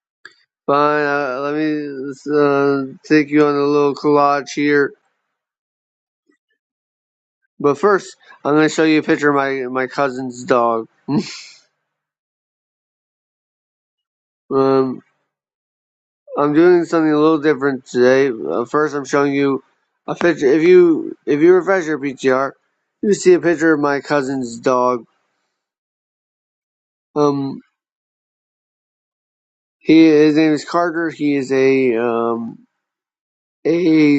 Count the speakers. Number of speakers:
1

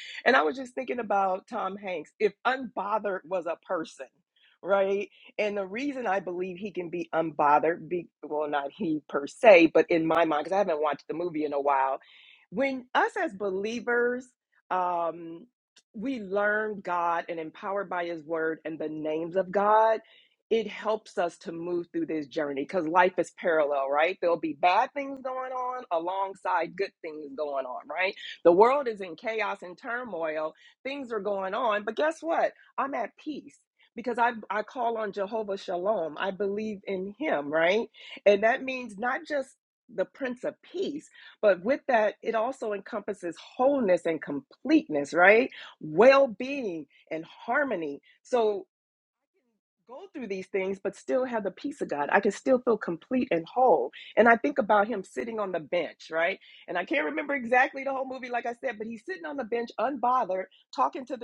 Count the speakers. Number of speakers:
1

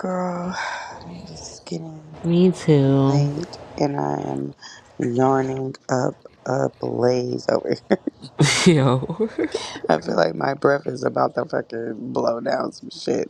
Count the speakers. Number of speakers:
2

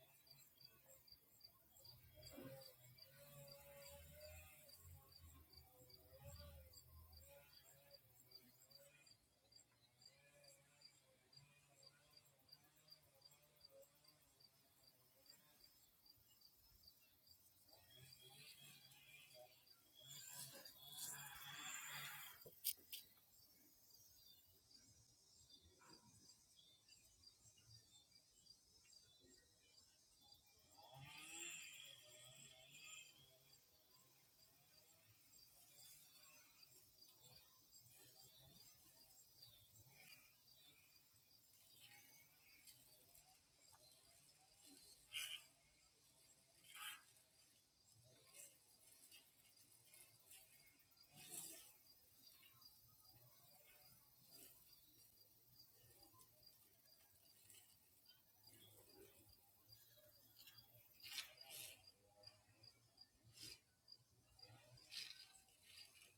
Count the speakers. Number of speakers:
0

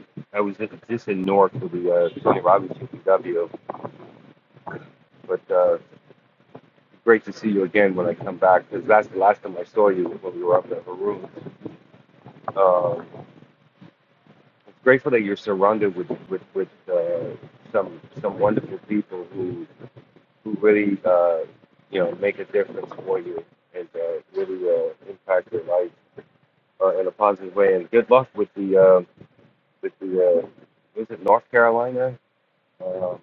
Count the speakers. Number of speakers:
1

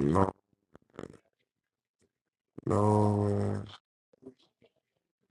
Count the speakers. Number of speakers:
1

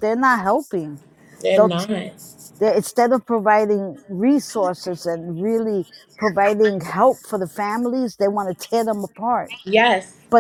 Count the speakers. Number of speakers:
2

